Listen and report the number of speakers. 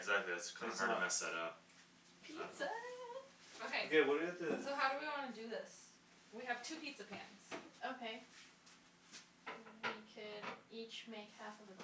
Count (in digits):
4